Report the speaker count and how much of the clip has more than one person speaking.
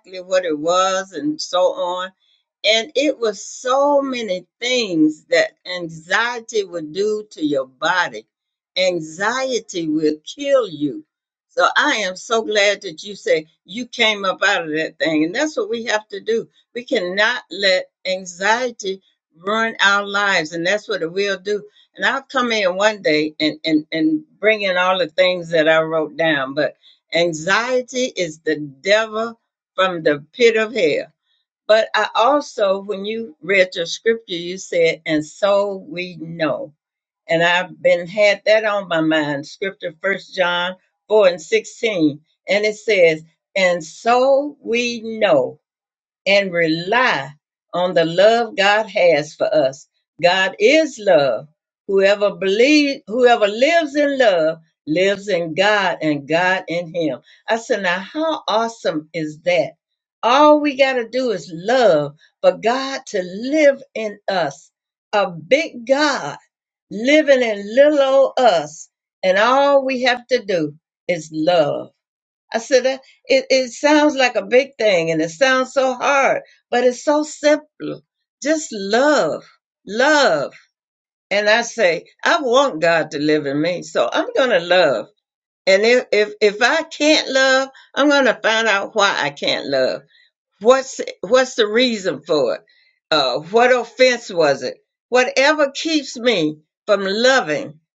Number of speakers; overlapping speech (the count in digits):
1, no overlap